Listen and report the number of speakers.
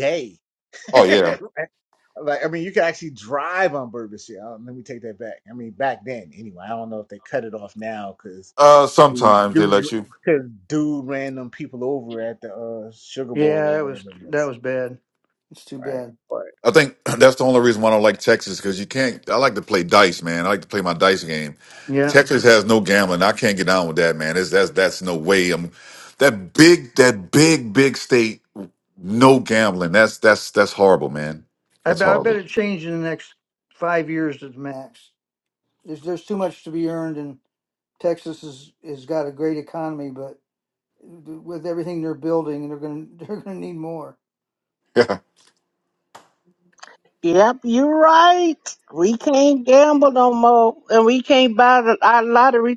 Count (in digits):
4